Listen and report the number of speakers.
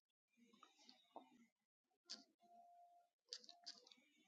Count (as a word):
zero